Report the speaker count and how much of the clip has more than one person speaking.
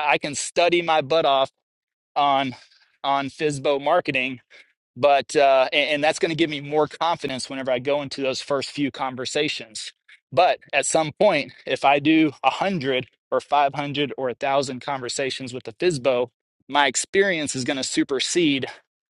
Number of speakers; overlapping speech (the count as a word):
one, no overlap